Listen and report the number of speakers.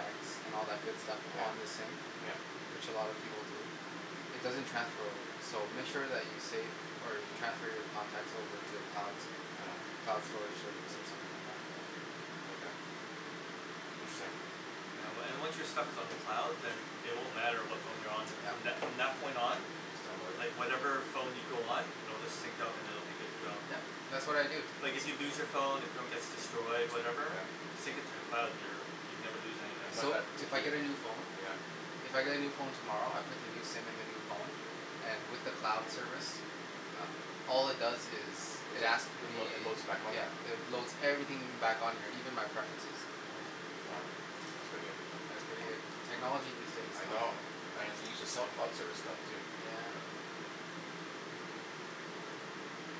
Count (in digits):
3